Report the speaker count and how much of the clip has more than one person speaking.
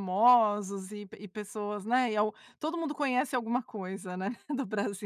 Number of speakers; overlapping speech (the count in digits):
1, no overlap